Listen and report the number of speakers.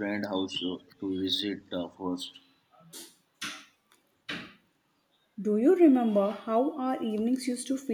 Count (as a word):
two